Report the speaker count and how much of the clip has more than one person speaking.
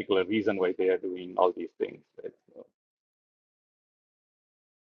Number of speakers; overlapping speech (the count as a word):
one, no overlap